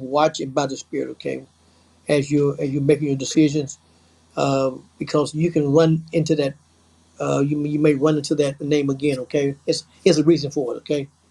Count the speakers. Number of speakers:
one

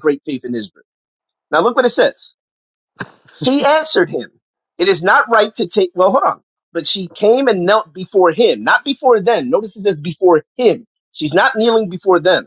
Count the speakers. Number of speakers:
one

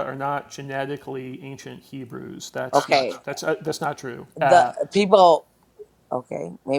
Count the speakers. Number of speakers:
two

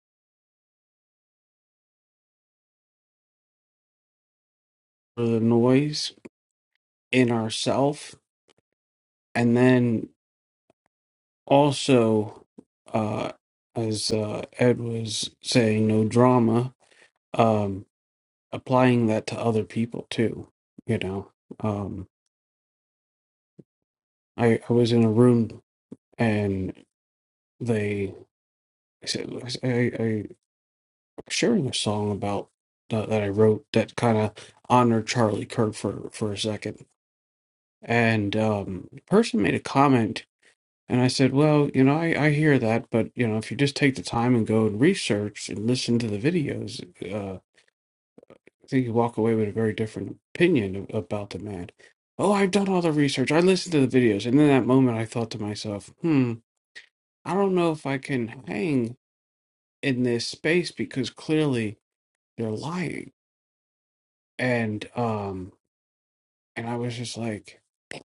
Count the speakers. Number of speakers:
one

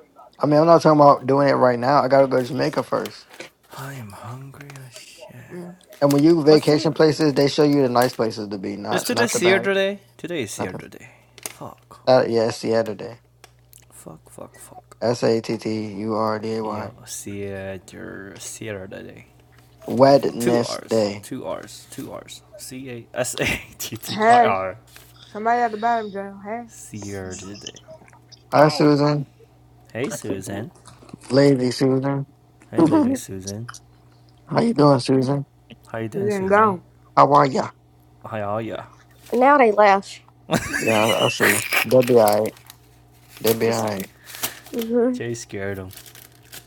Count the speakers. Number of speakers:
four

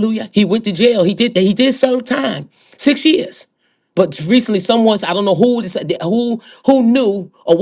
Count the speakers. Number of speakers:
one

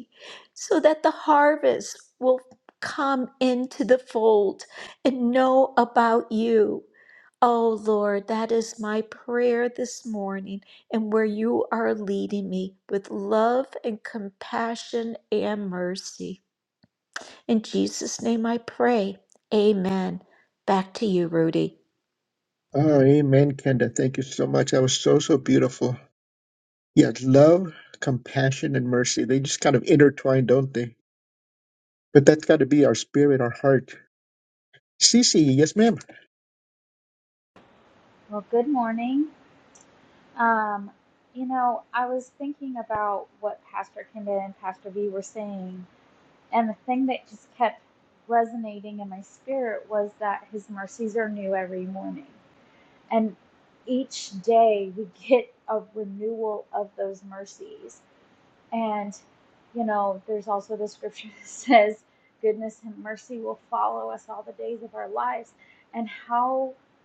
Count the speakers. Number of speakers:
three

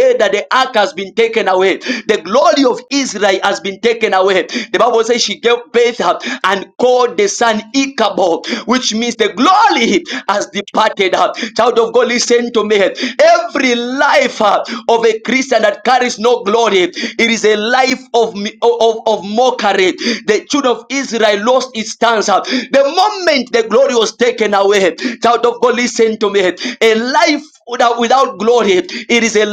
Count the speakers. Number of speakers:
one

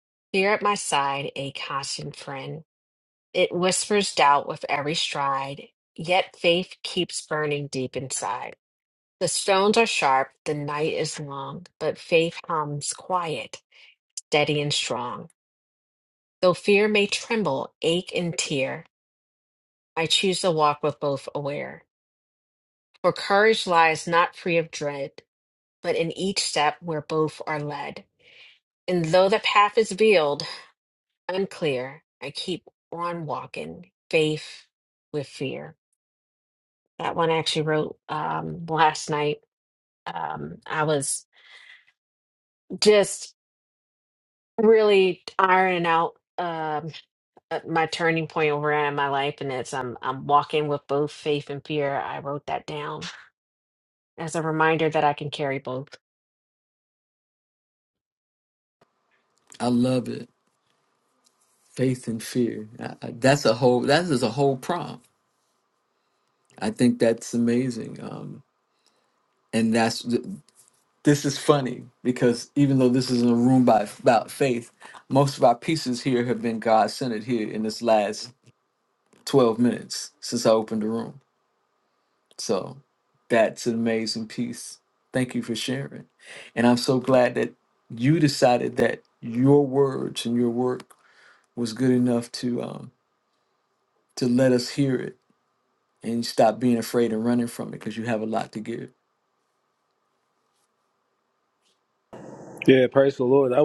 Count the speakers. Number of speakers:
three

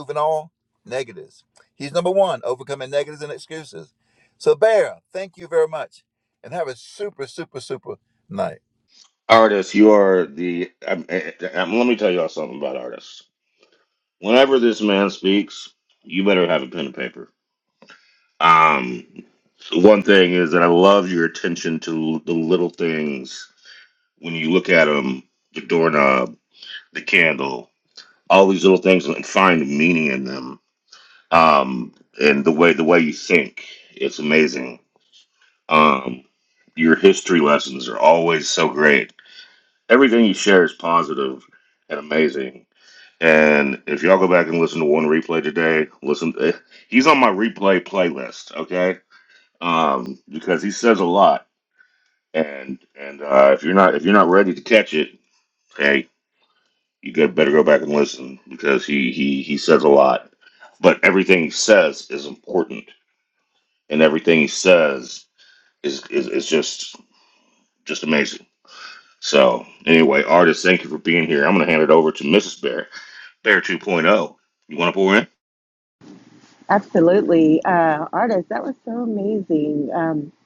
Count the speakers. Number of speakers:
three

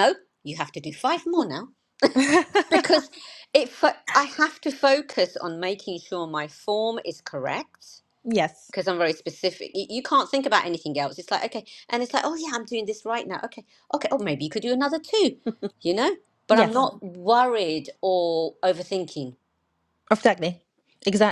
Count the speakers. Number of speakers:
two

